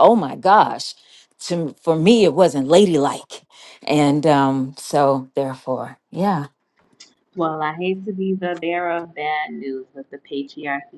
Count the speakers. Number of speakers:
2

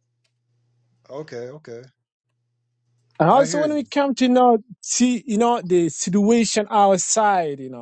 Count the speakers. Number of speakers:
2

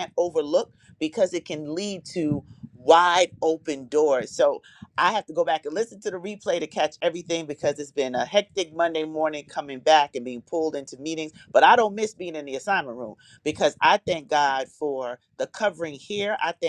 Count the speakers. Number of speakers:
1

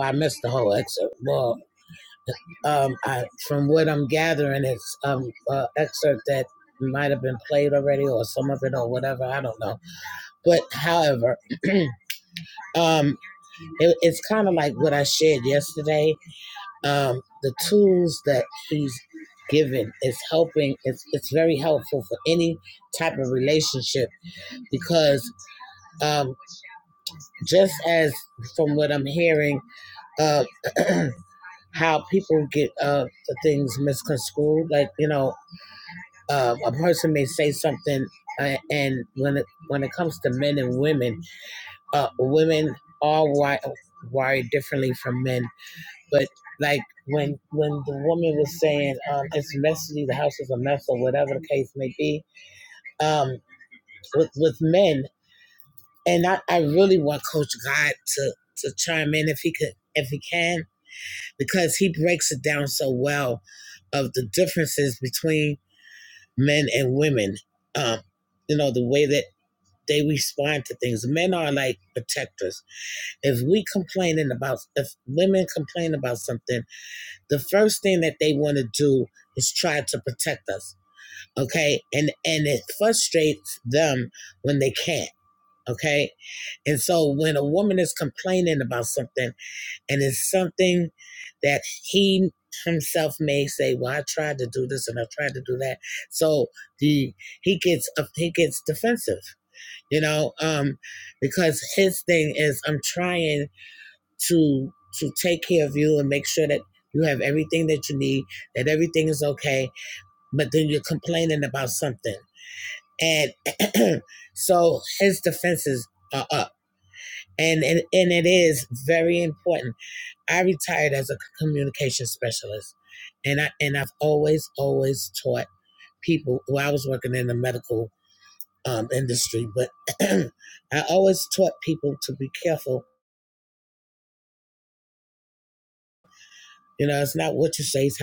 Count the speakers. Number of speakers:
1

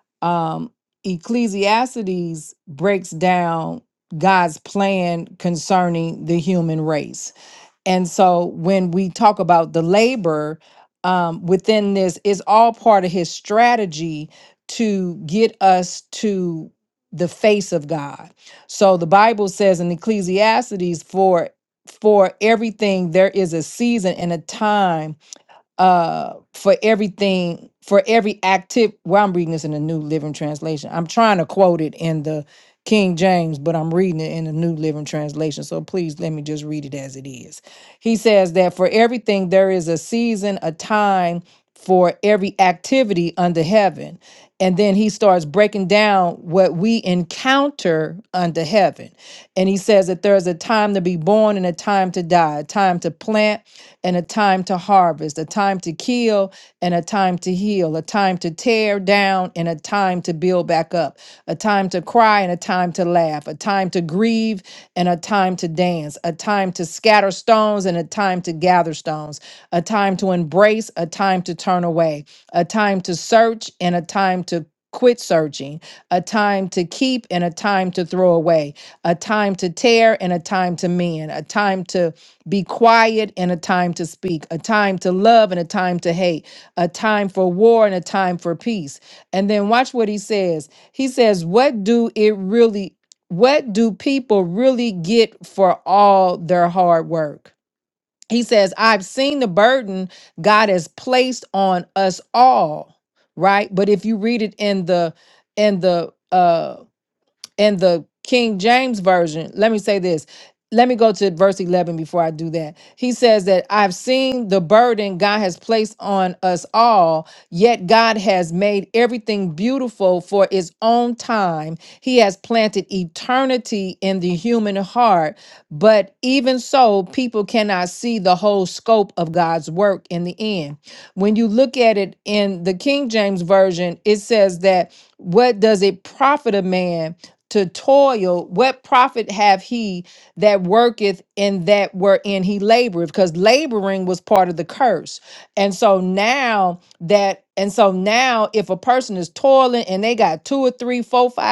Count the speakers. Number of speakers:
1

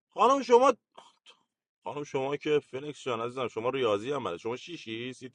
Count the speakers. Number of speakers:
1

